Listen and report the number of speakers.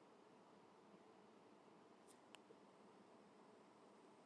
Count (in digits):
0